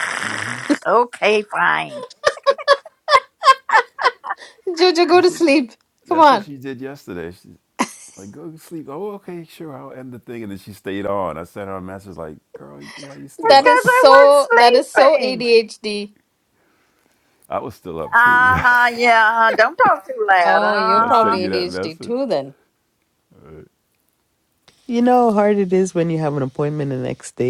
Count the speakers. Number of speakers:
four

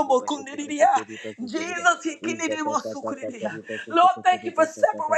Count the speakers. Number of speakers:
one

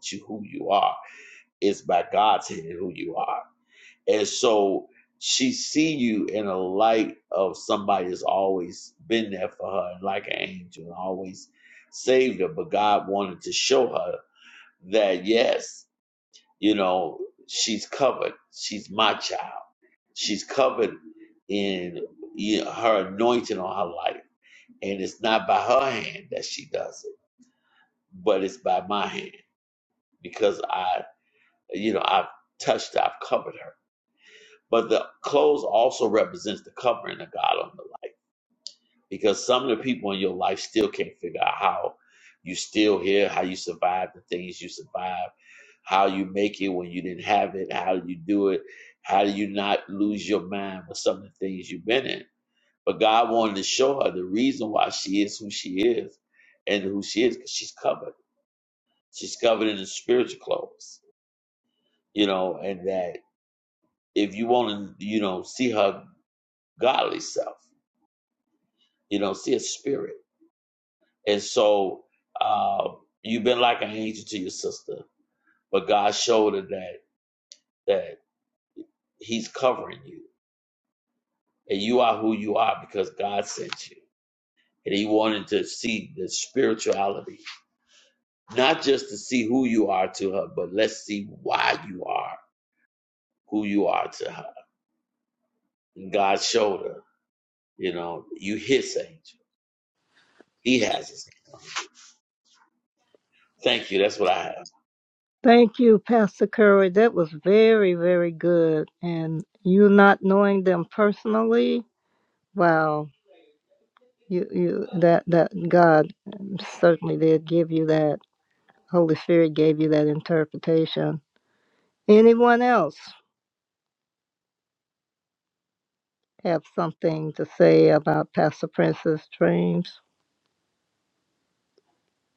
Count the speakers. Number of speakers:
two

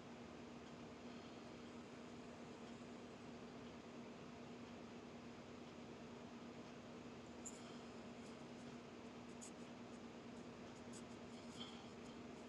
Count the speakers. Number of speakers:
zero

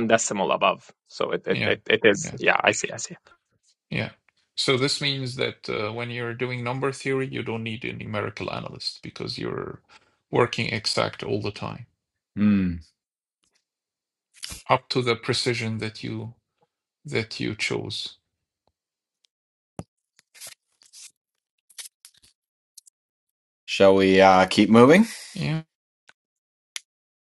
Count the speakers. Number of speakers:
three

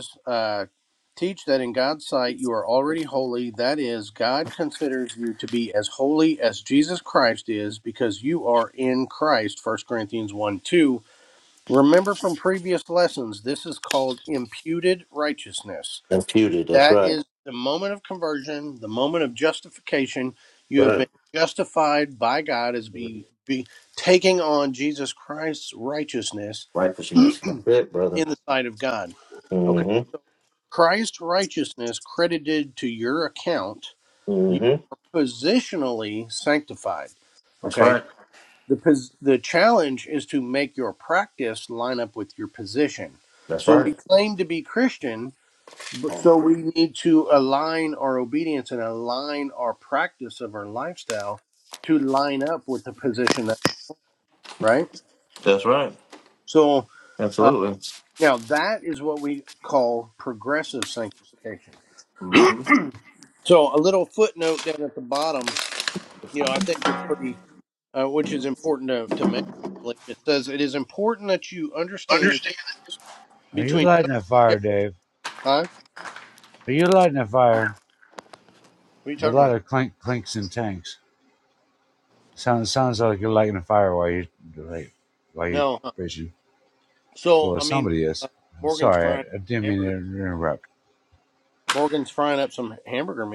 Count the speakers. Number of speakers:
three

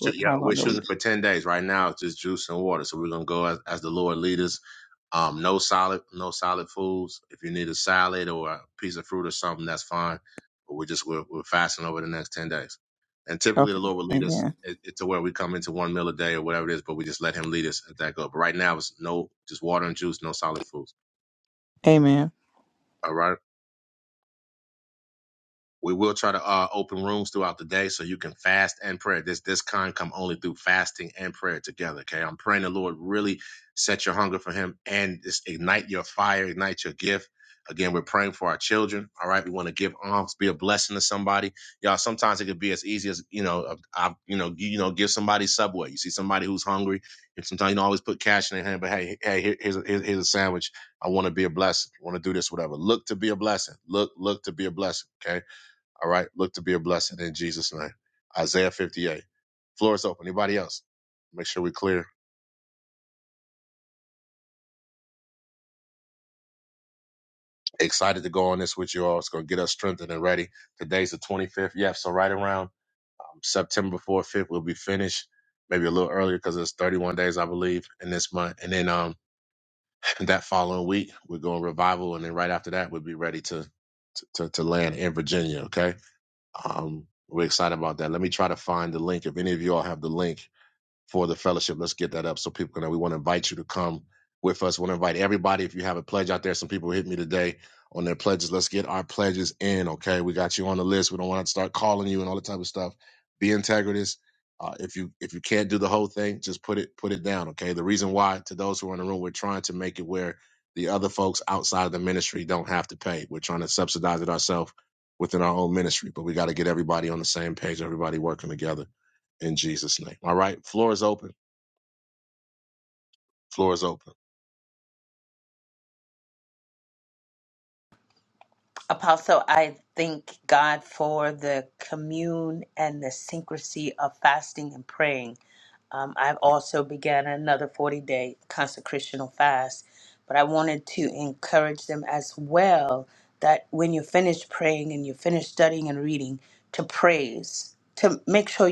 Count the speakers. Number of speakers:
three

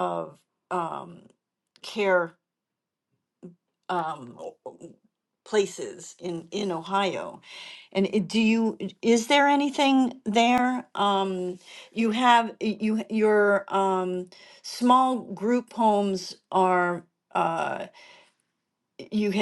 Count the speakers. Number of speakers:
one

